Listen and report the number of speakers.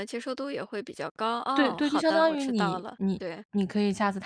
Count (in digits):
2